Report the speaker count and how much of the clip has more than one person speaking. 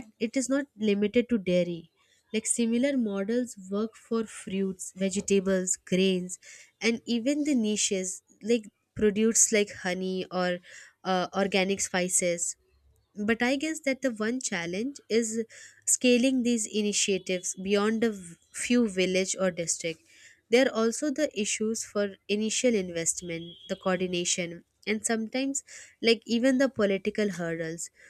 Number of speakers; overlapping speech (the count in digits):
1, no overlap